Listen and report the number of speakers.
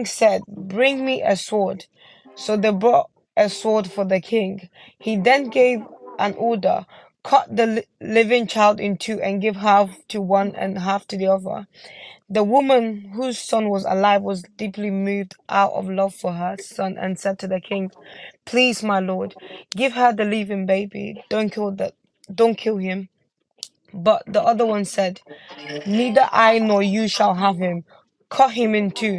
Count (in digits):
1